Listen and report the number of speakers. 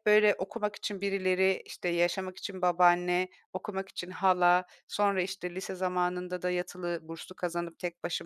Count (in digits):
1